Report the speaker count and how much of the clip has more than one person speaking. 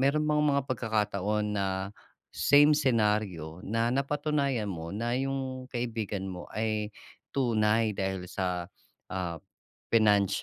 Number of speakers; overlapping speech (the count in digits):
1, no overlap